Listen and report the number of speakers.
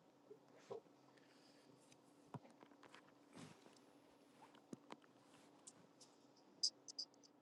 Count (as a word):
zero